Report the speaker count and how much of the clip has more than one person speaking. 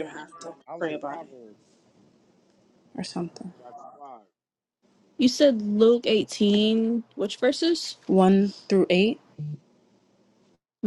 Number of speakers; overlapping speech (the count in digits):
3, about 5%